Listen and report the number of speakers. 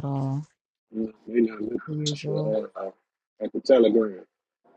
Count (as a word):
two